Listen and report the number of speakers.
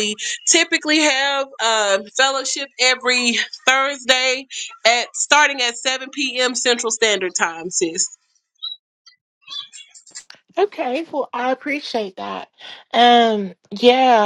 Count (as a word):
two